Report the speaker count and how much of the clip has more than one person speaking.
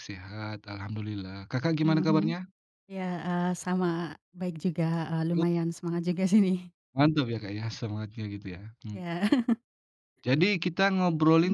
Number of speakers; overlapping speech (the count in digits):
2, about 7%